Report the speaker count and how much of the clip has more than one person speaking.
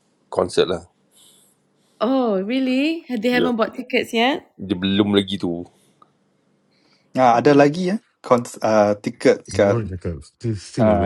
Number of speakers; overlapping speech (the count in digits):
4, about 10%